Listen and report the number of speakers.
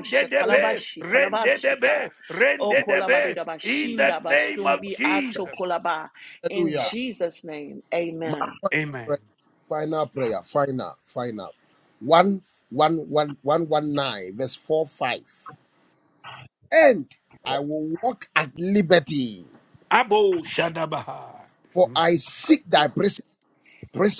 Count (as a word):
three